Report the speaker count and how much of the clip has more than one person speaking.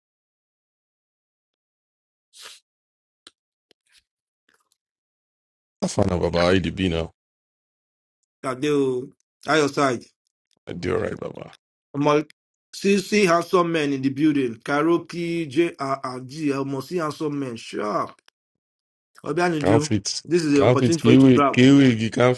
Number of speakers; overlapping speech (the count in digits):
2, about 6%